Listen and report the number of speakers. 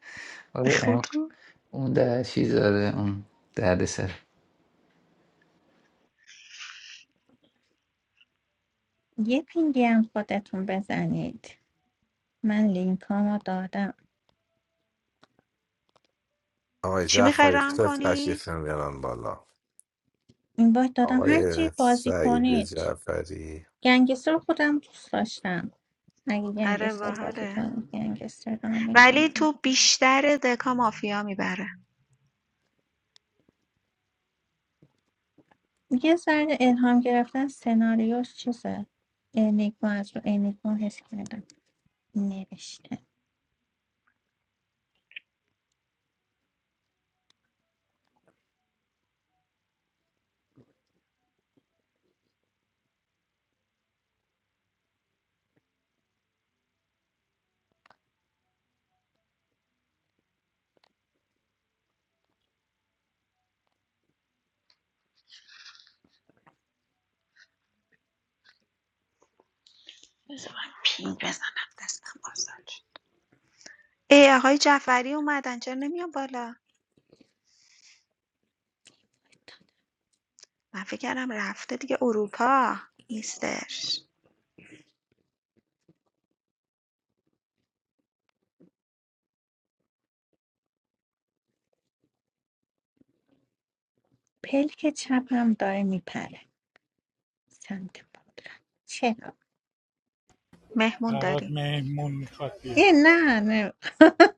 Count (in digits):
5